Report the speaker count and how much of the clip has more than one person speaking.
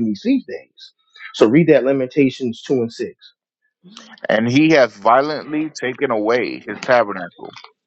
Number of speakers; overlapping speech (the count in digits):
2, no overlap